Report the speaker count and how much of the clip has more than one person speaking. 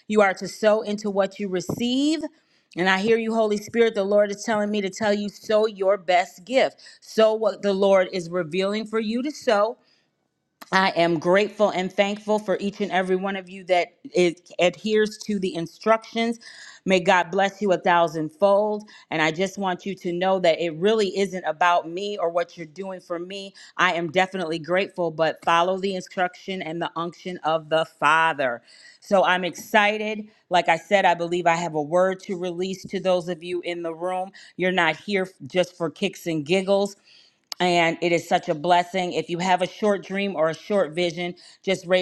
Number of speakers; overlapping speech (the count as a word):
one, no overlap